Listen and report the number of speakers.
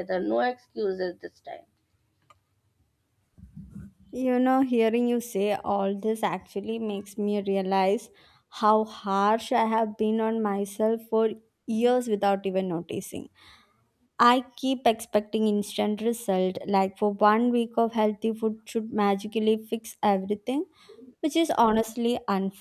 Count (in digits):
2